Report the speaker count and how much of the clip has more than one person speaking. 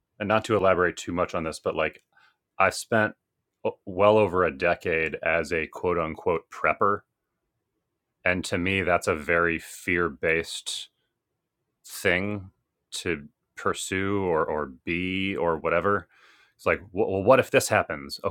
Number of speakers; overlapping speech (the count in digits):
1, no overlap